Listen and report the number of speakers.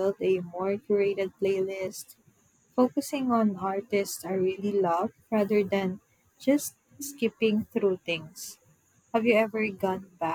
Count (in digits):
1